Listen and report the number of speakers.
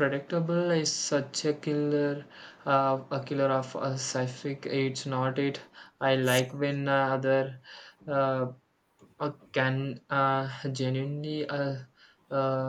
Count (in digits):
1